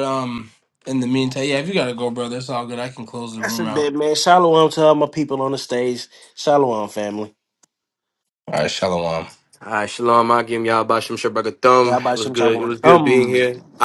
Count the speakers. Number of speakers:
3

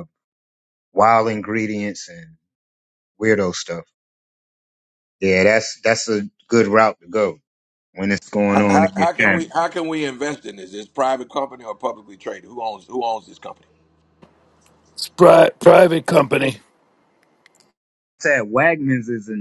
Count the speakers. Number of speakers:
3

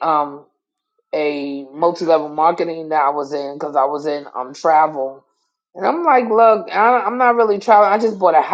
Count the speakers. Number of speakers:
1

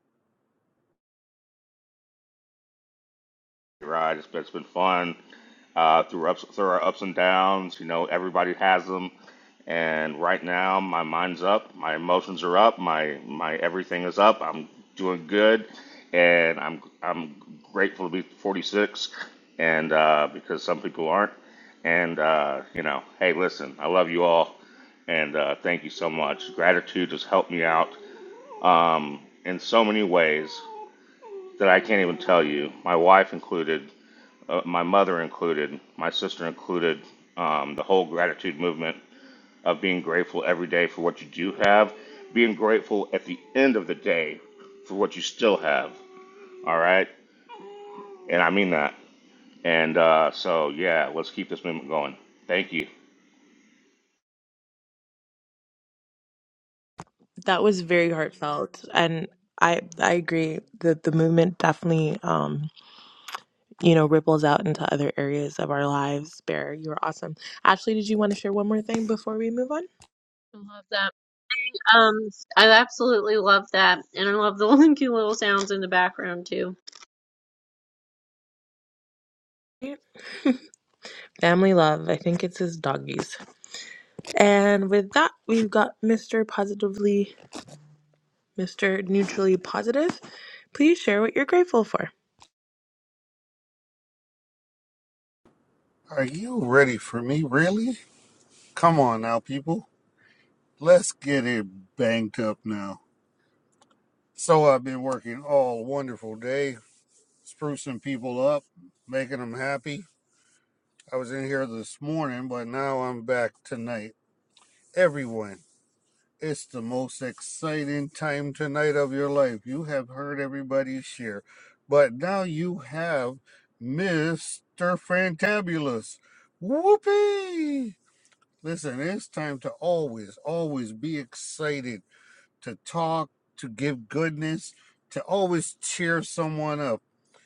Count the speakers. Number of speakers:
4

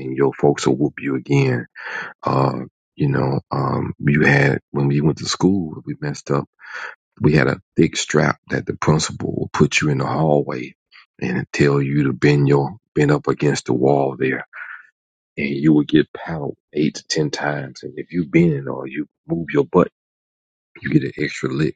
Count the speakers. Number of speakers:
1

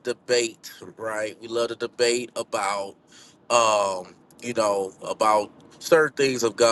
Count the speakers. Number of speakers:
1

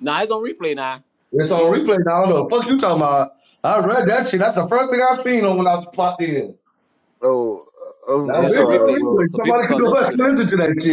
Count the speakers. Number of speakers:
3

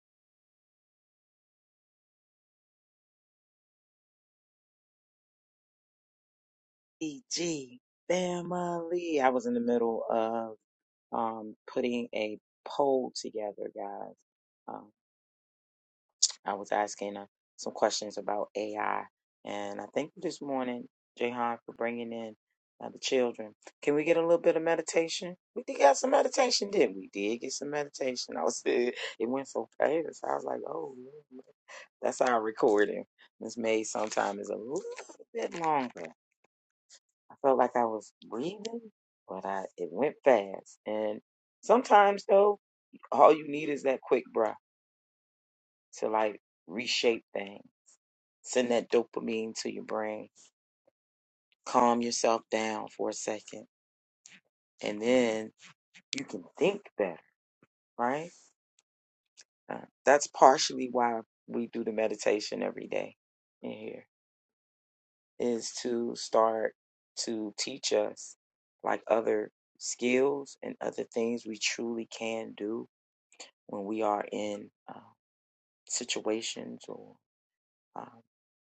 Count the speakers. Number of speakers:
1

